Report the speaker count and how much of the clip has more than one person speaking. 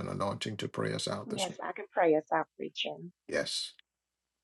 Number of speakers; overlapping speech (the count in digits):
2, about 5%